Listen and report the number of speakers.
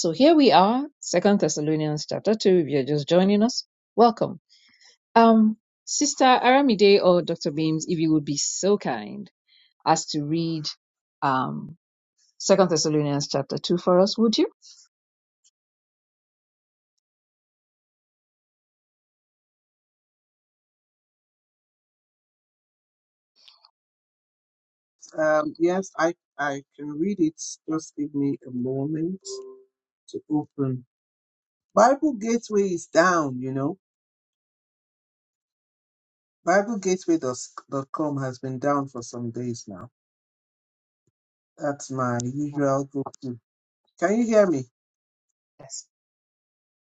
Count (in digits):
2